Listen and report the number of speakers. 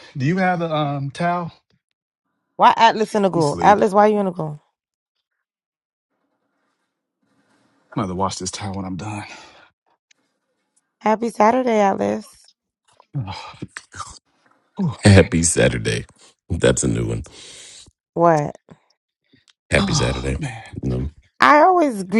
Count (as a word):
three